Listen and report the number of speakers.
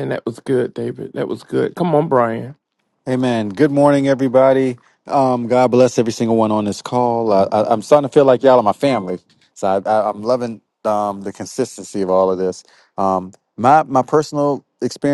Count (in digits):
2